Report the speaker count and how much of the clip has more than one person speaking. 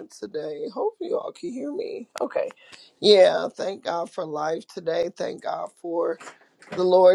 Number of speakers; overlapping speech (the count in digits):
1, no overlap